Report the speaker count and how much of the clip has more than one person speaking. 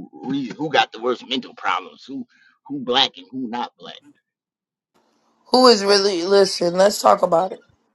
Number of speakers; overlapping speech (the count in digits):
2, no overlap